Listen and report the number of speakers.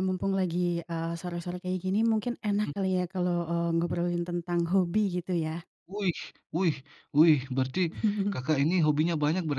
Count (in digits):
2